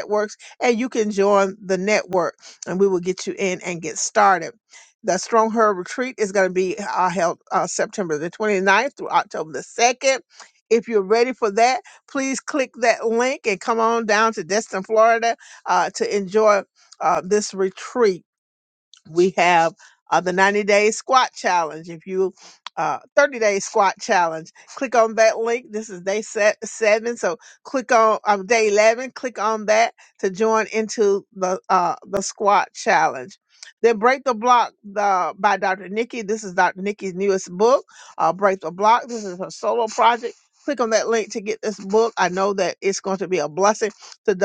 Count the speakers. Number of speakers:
one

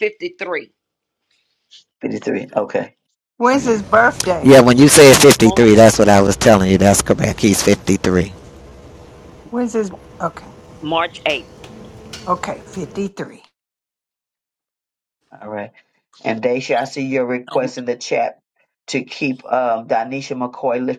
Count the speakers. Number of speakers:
four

